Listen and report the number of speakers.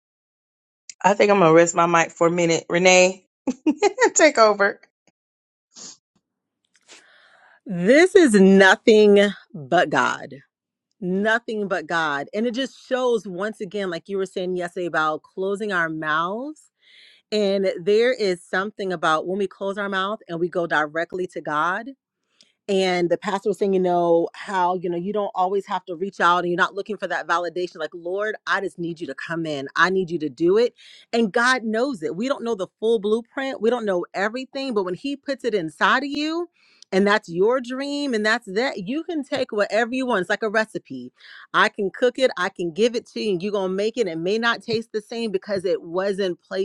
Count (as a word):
two